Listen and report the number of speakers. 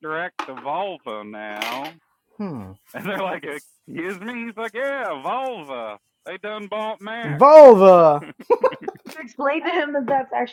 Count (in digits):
3